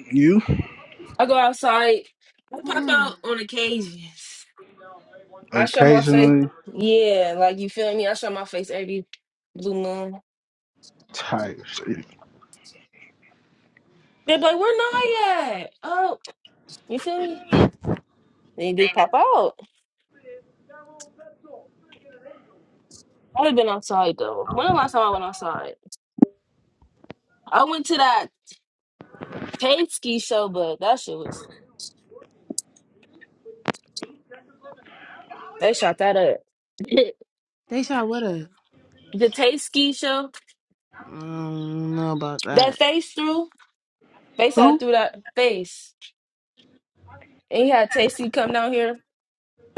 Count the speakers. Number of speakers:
three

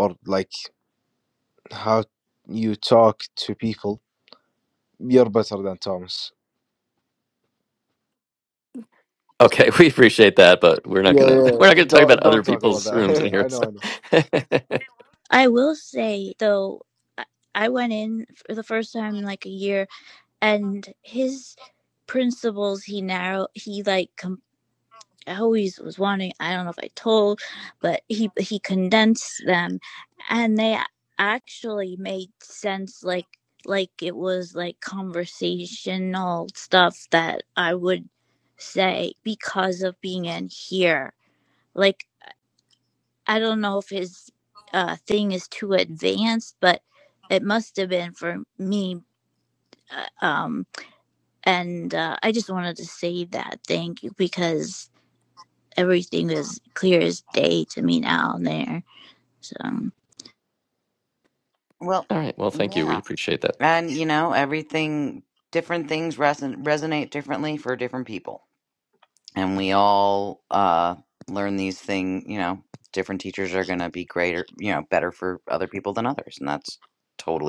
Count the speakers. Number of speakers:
four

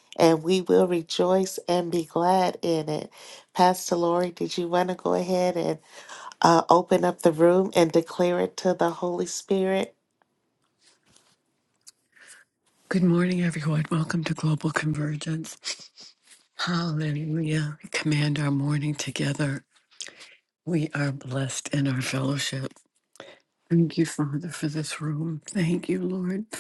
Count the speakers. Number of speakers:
two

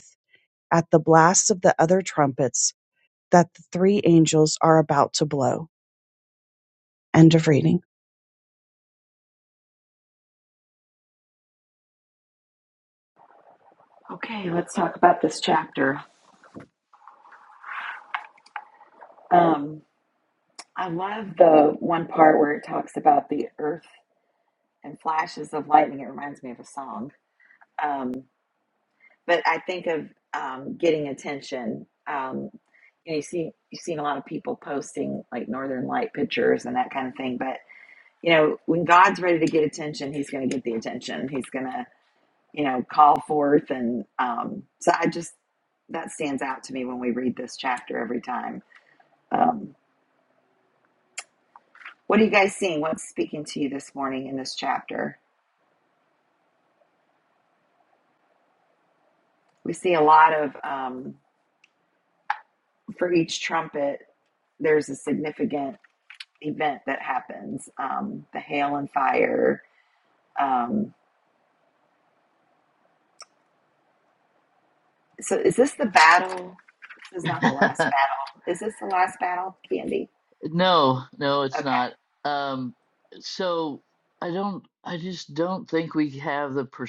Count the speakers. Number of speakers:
three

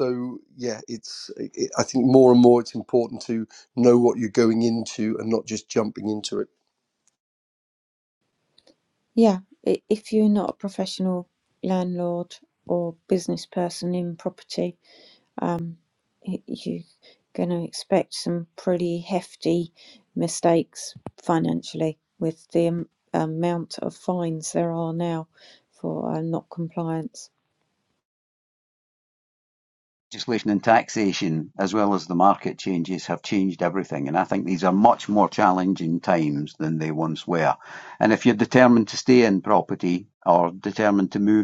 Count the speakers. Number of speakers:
three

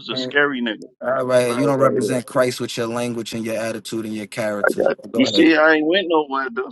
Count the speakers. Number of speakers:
two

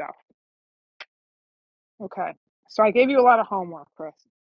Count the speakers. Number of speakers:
one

